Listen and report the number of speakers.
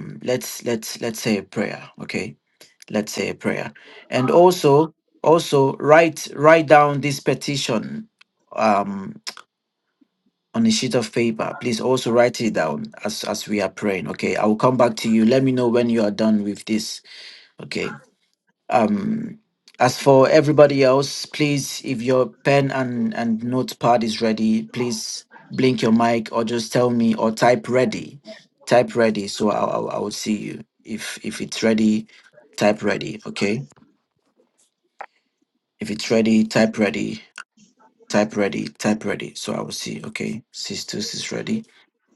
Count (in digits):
1